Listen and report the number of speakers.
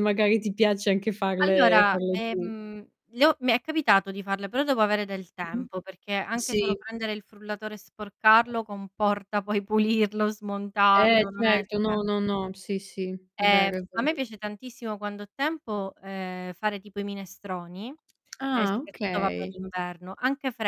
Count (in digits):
2